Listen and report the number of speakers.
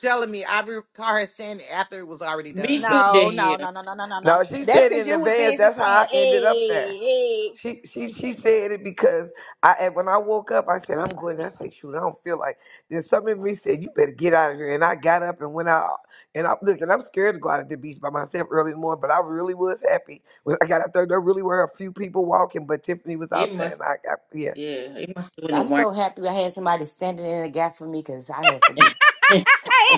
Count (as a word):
five